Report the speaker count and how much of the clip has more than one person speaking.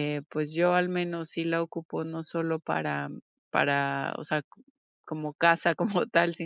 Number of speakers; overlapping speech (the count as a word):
one, no overlap